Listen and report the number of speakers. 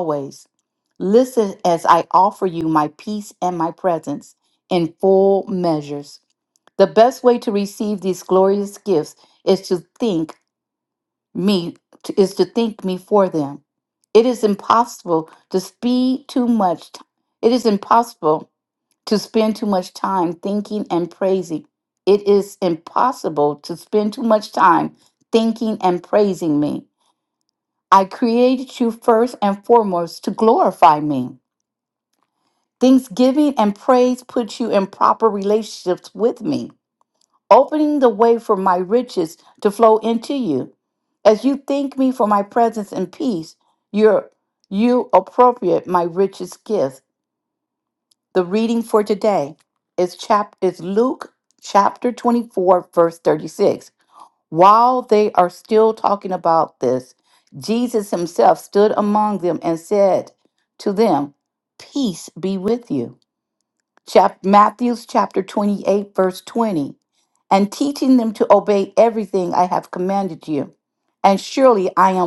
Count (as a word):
one